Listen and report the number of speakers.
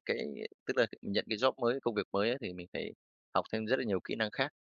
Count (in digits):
1